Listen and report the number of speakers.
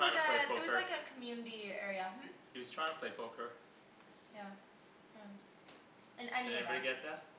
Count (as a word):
two